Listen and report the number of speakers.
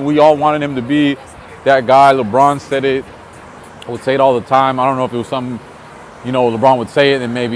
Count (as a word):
one